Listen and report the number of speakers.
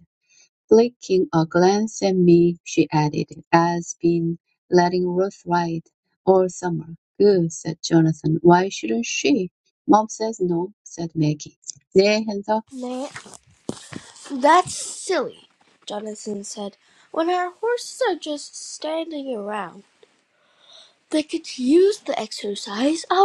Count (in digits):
2